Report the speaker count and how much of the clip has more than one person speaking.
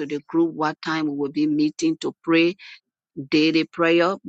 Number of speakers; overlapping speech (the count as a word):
one, no overlap